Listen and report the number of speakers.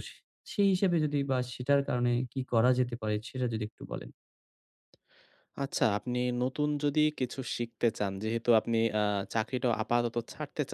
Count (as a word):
two